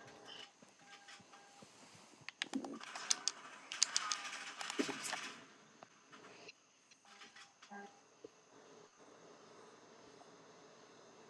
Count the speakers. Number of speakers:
zero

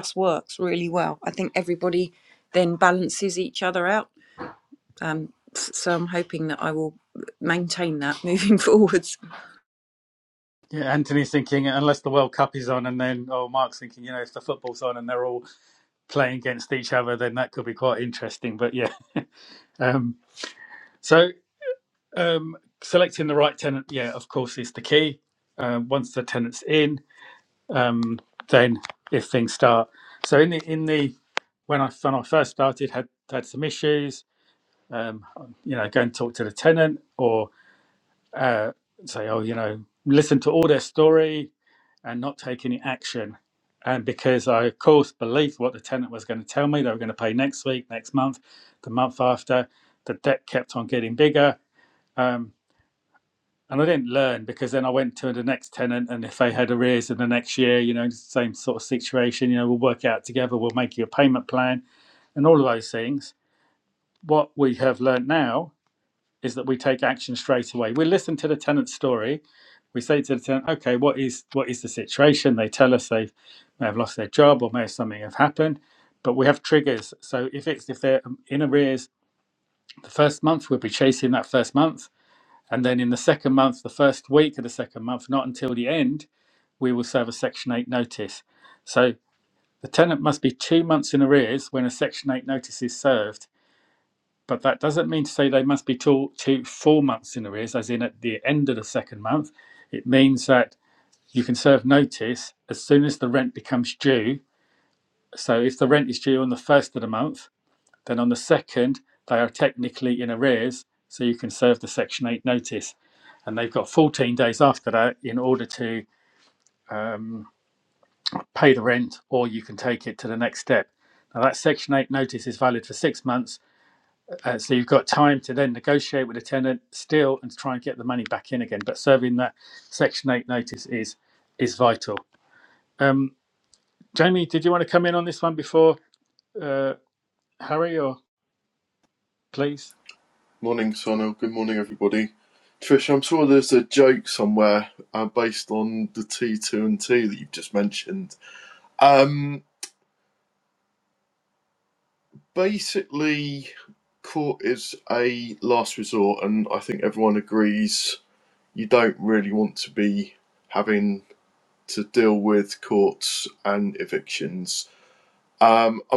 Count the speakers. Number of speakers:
three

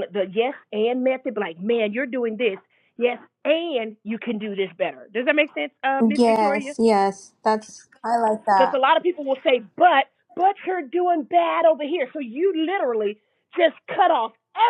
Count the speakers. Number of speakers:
two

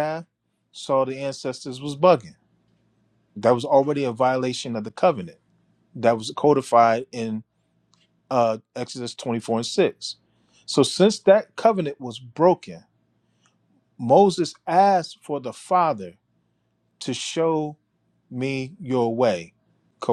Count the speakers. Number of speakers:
one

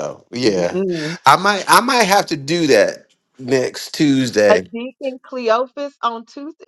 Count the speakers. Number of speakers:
two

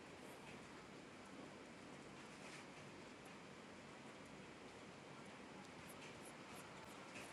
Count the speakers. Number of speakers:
zero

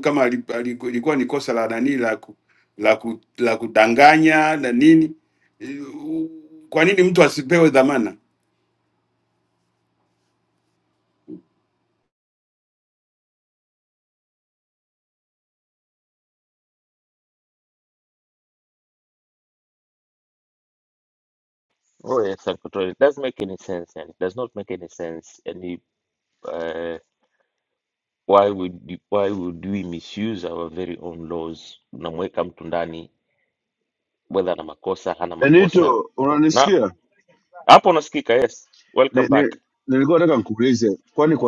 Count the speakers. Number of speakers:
three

